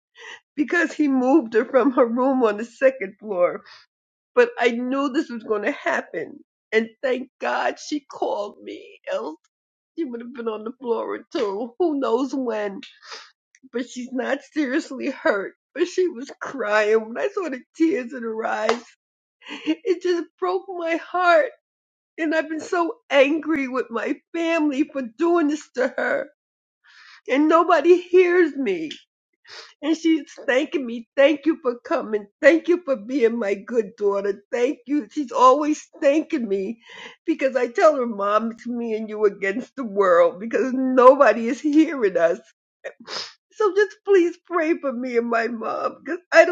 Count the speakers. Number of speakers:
one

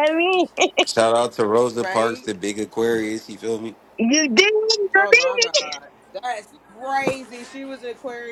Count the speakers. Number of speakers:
three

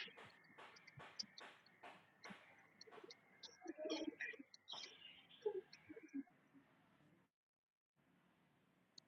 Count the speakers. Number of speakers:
zero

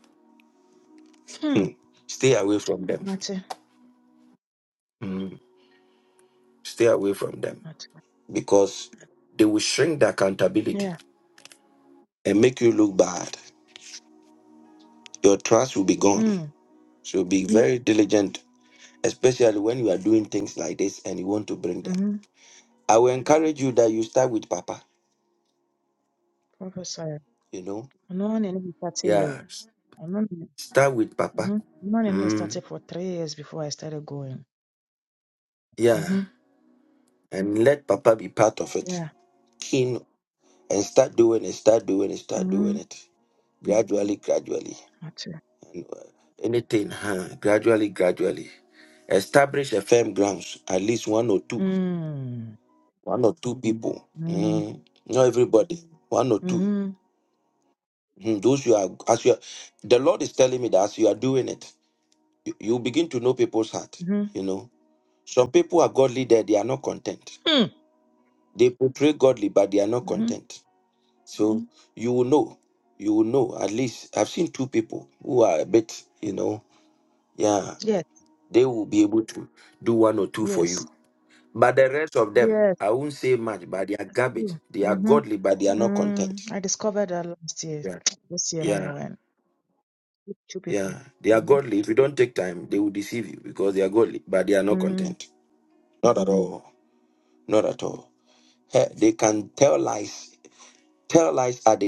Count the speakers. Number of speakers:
two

